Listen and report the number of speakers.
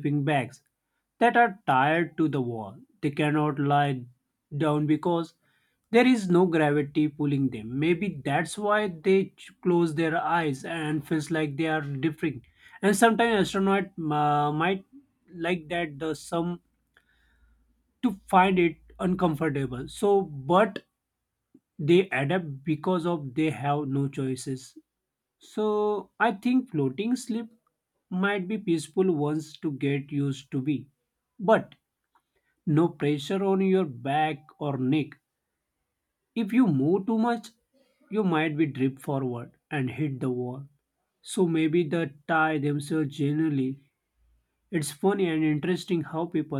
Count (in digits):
1